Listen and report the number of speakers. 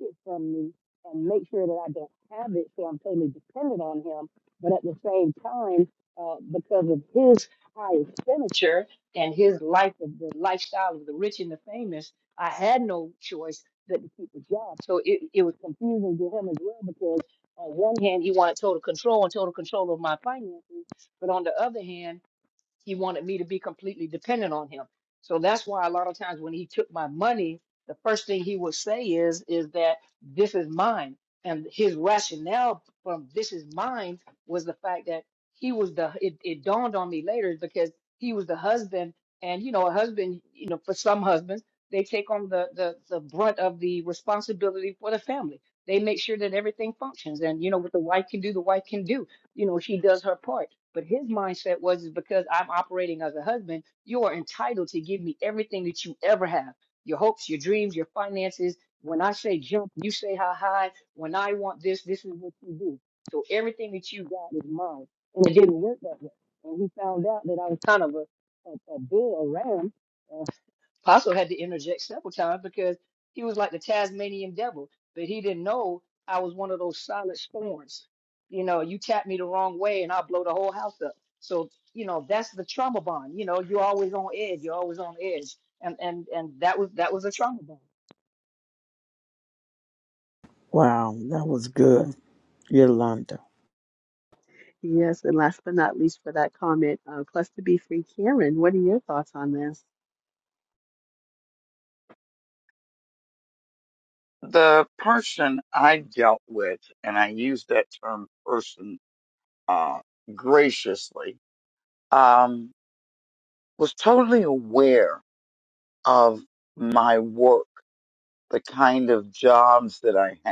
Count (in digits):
4